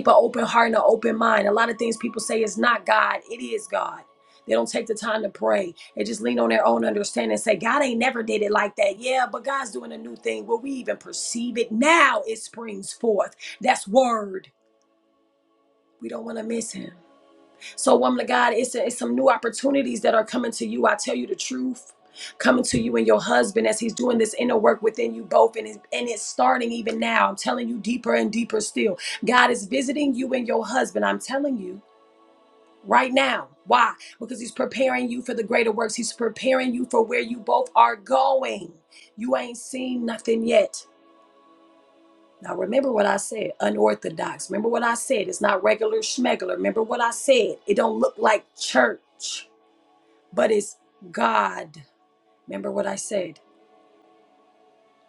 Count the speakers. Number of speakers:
1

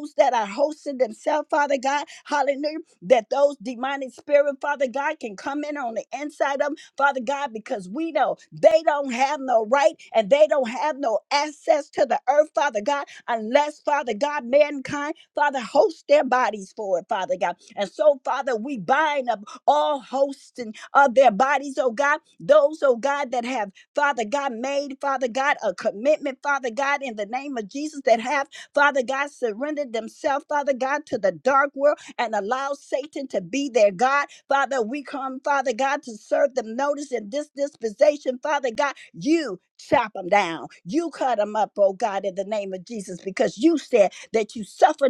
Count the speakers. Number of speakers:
1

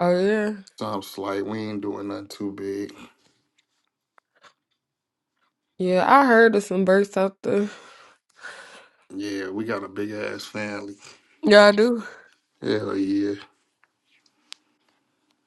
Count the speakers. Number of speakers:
2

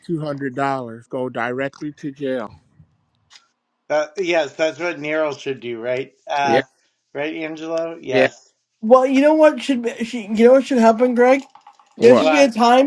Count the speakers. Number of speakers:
3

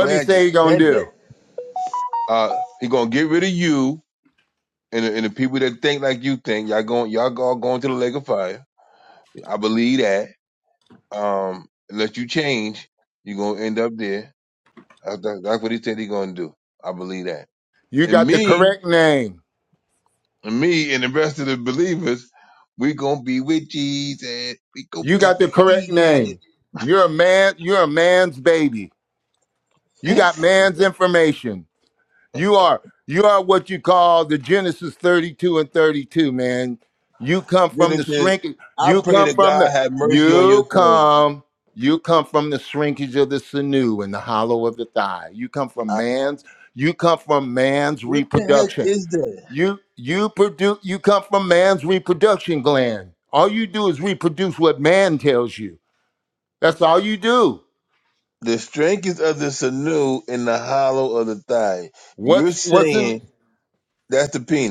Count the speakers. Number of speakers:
2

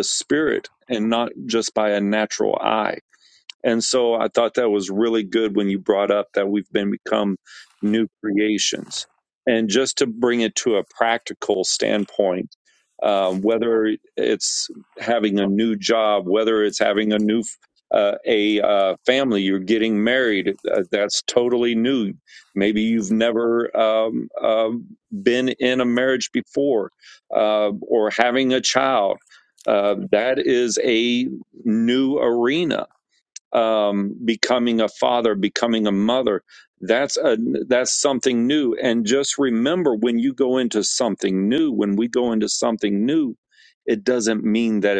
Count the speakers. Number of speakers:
1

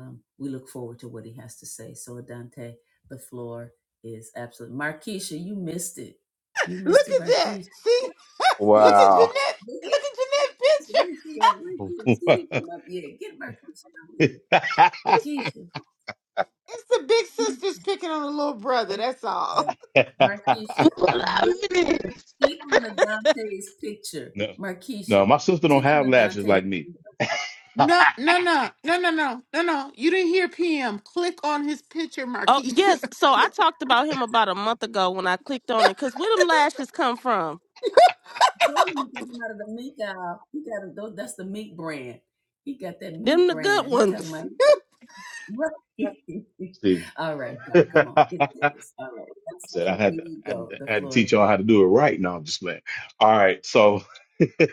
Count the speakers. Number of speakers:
4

